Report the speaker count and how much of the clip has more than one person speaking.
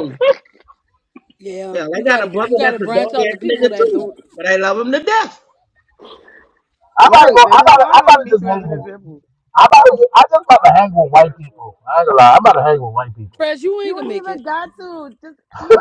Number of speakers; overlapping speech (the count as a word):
four, about 31%